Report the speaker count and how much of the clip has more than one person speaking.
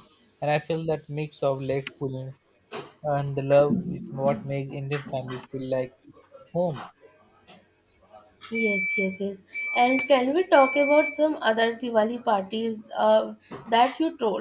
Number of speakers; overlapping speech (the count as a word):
two, no overlap